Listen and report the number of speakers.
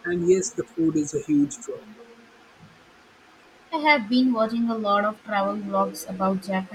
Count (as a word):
two